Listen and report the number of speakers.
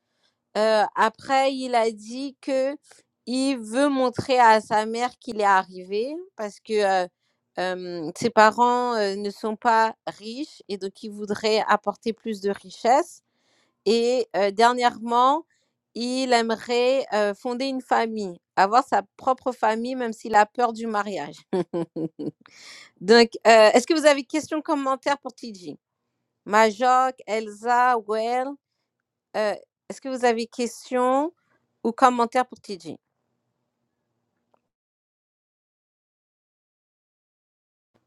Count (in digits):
1